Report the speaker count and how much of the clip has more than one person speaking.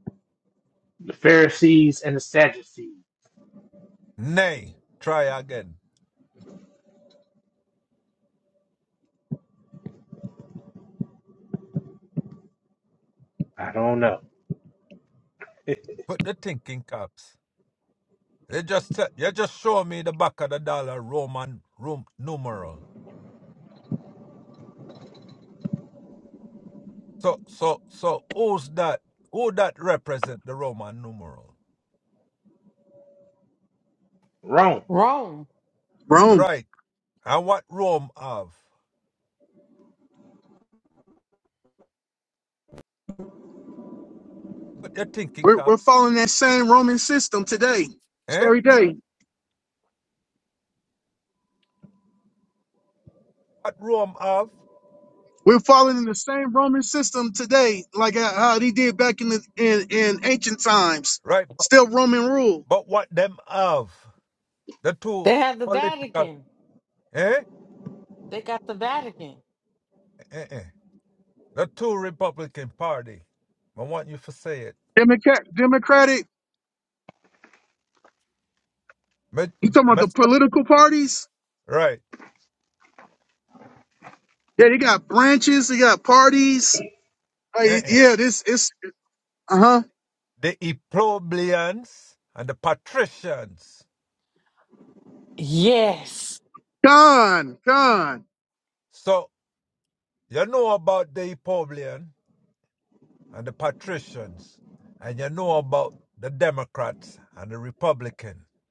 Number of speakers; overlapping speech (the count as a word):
four, about 2%